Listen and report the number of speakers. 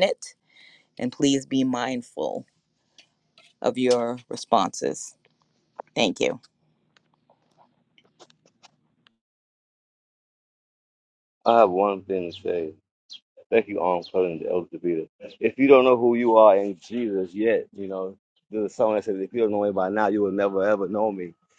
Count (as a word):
two